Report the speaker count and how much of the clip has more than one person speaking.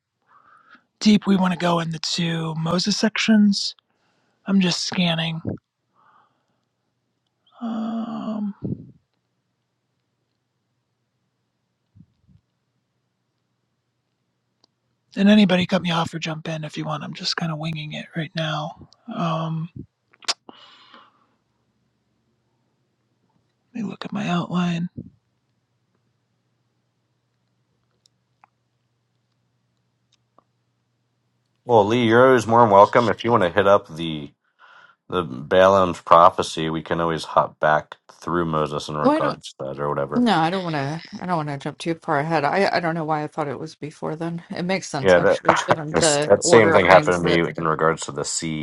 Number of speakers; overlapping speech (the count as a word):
three, about 6%